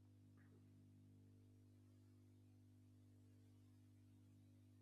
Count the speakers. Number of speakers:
zero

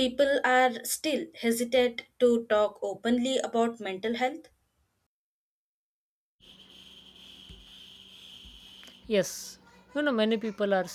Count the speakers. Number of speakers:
two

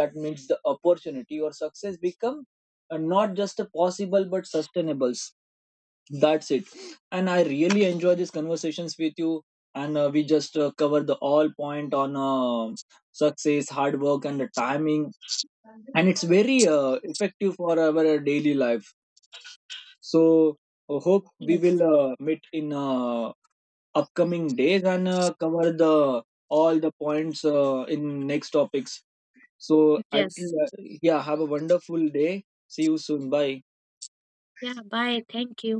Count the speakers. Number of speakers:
two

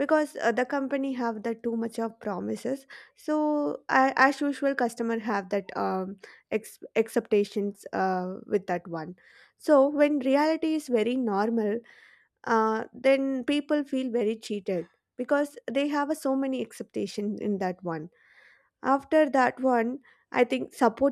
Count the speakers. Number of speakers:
one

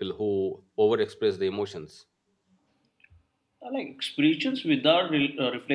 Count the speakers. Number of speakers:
two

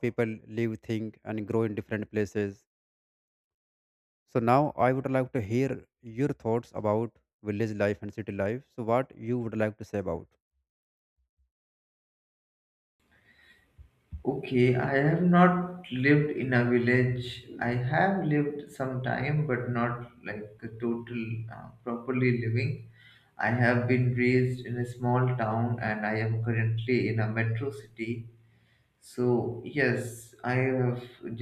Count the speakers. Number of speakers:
two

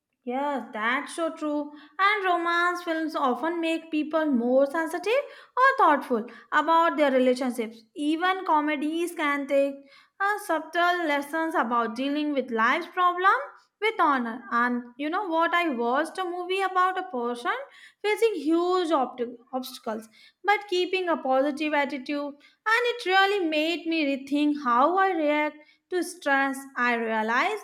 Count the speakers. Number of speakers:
one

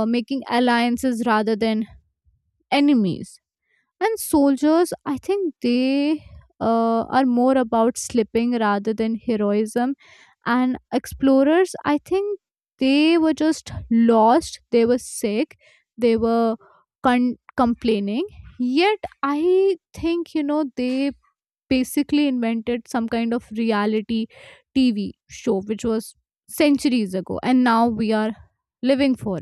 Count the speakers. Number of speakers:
one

